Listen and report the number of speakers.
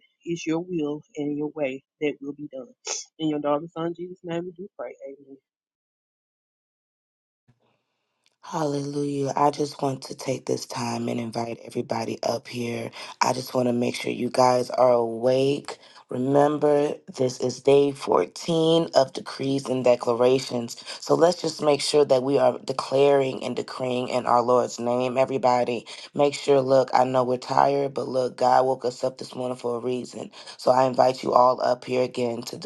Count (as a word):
two